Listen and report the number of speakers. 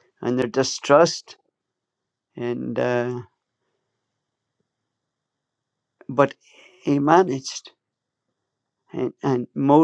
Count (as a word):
one